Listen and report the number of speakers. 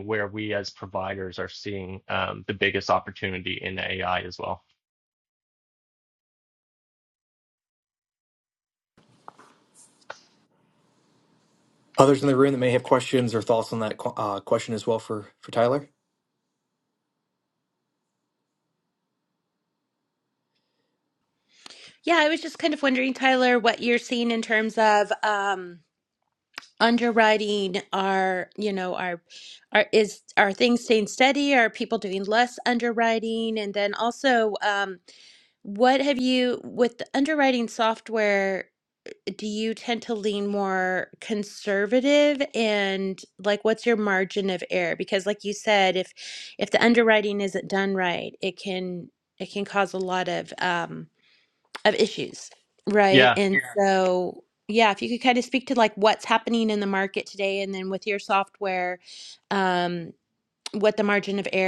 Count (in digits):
3